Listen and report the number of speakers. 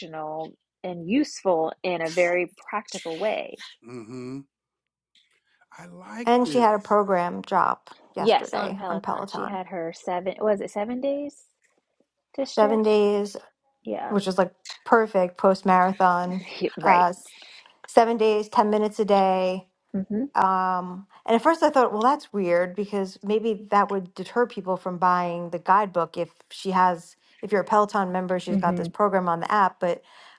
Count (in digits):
3